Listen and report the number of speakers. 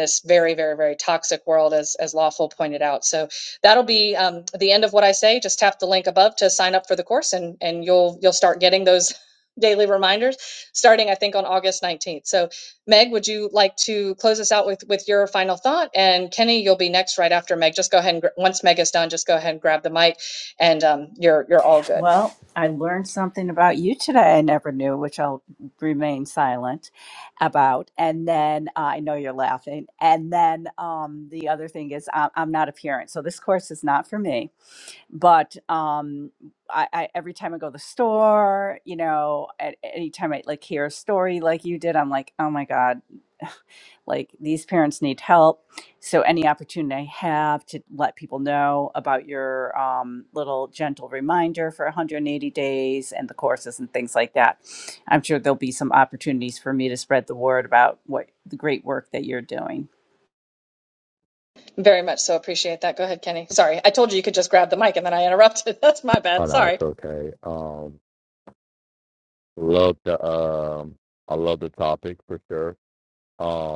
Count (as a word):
three